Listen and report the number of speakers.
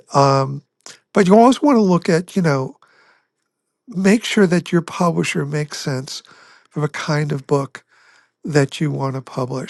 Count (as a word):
one